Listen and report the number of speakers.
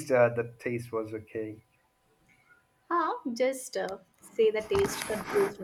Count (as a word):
two